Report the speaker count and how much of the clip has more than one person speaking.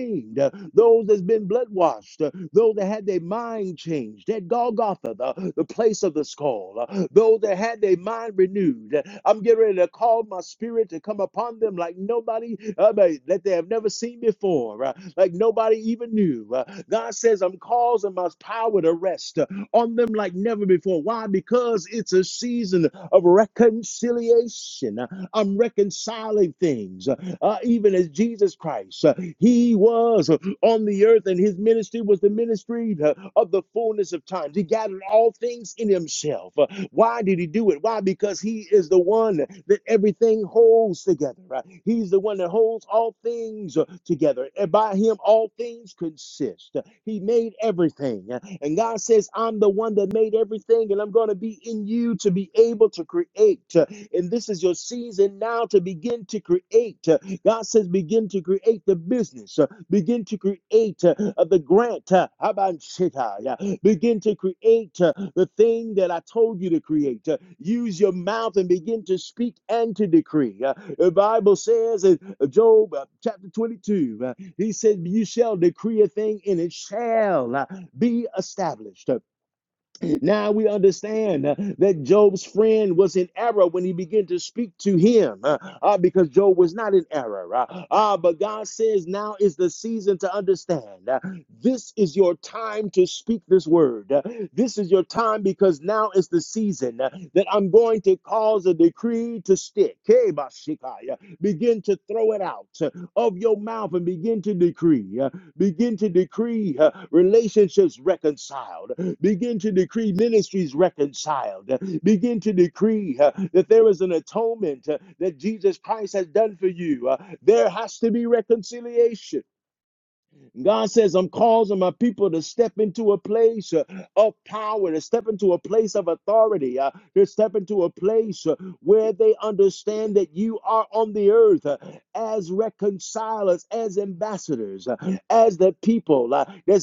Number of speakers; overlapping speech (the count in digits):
1, no overlap